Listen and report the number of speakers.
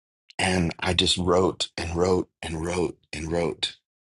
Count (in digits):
1